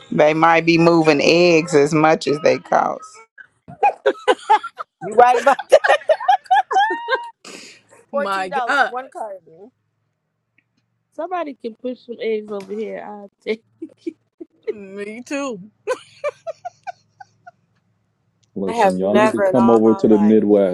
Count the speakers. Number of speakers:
5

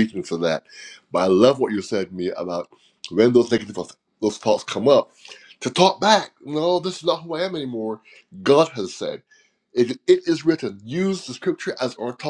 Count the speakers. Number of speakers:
1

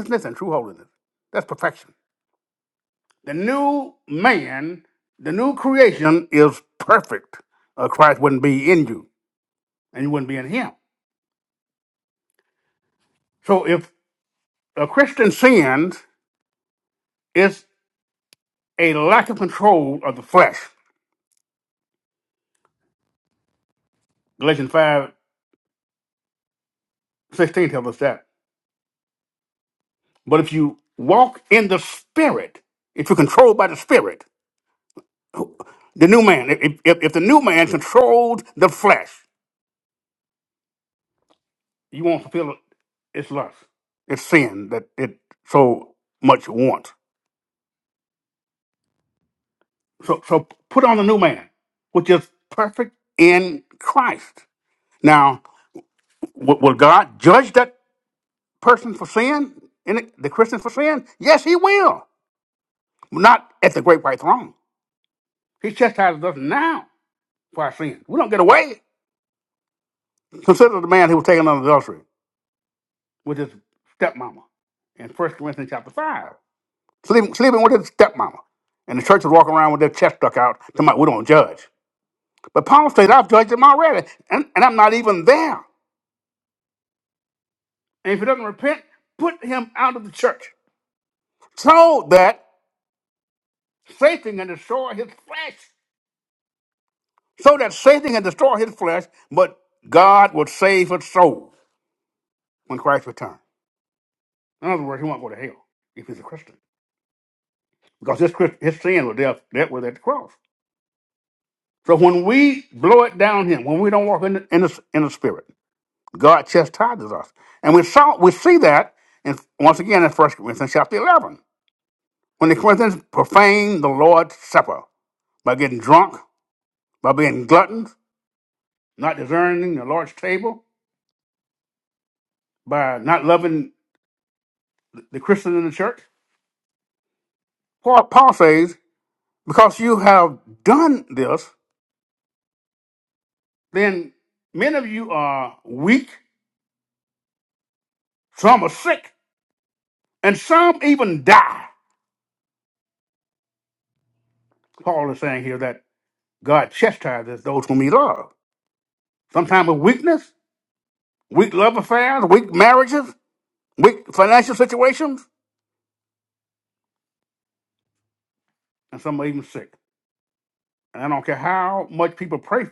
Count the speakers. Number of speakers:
1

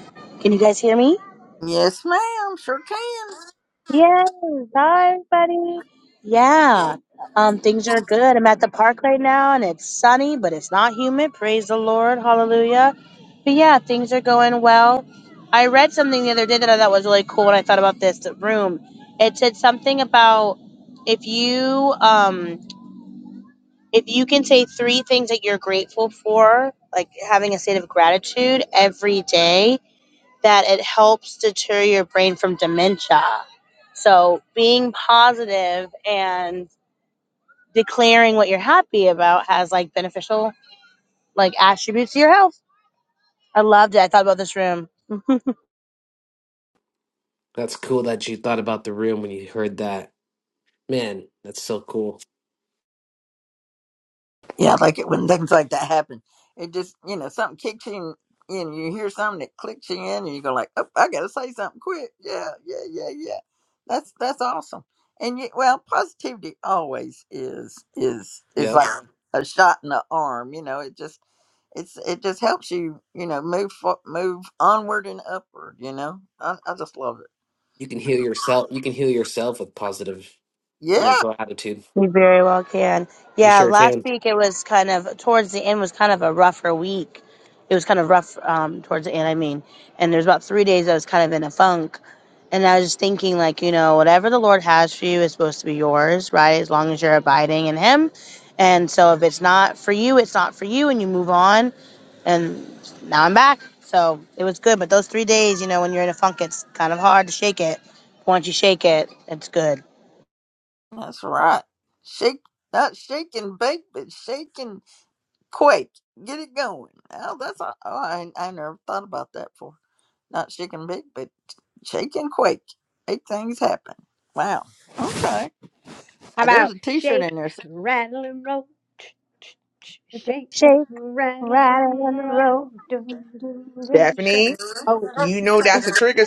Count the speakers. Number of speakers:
5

